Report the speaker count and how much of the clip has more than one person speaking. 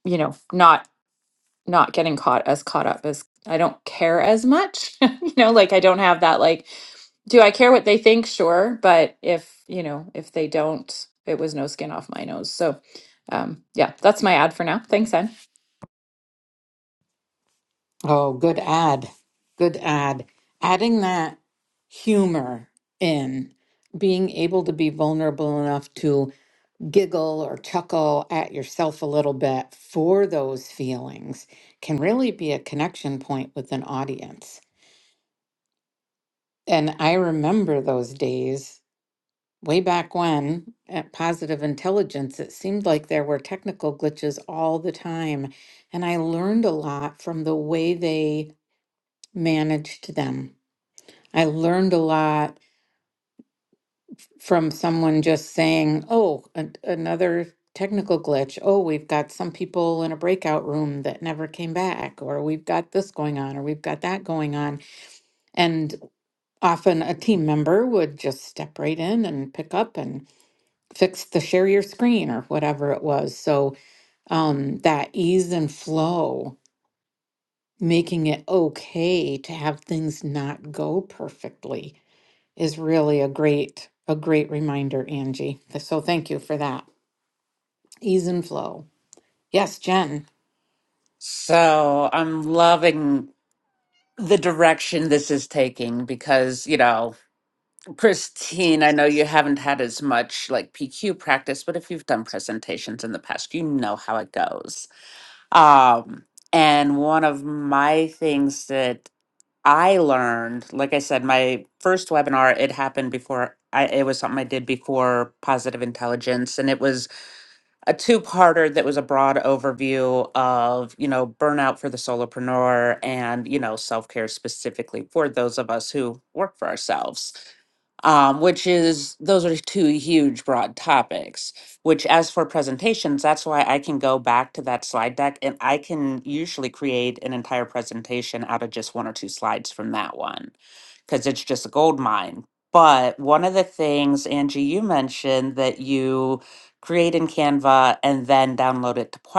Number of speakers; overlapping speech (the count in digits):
3, no overlap